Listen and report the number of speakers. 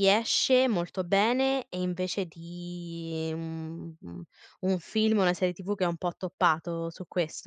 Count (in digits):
1